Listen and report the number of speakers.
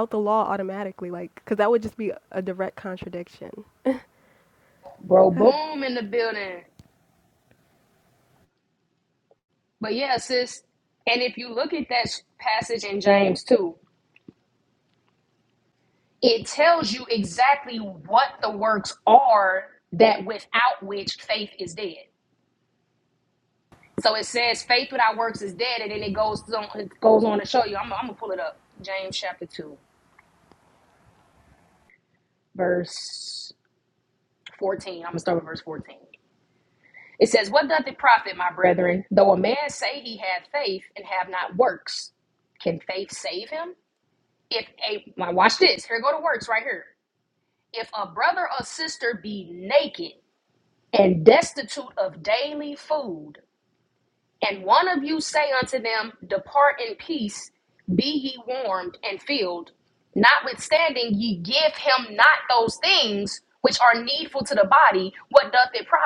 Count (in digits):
2